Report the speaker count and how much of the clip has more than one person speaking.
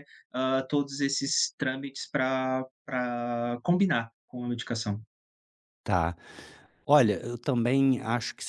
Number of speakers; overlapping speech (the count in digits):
2, no overlap